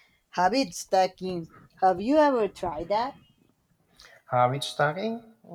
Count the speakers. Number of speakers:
2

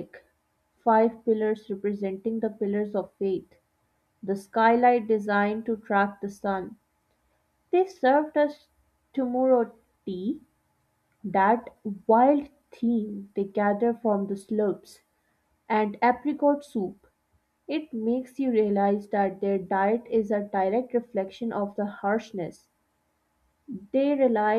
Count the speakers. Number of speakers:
1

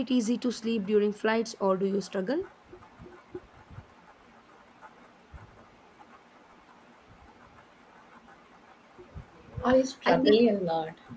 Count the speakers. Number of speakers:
2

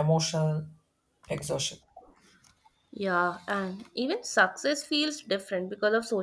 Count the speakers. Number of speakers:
2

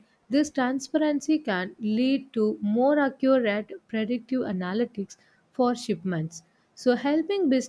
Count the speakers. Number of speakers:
1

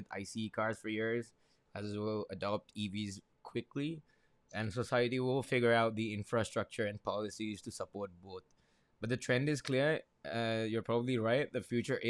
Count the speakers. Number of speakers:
1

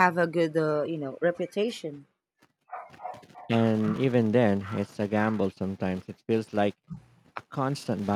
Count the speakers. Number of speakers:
2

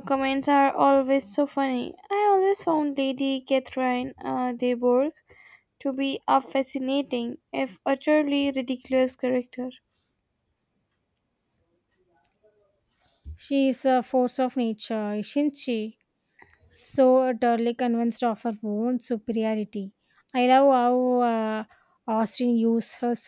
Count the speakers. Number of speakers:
2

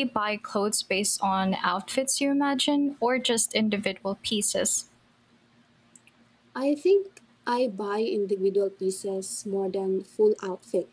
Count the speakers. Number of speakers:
2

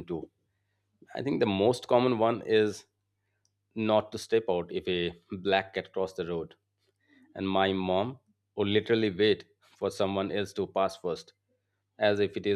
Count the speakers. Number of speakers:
1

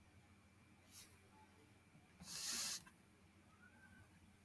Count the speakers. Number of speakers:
0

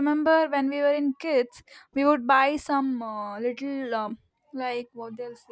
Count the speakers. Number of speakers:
1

